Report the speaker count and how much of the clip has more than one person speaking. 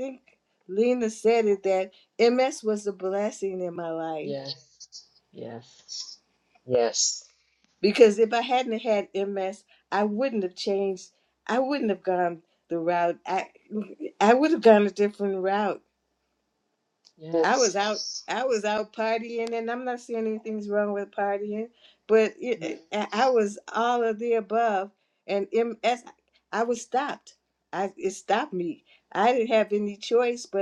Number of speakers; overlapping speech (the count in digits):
2, about 1%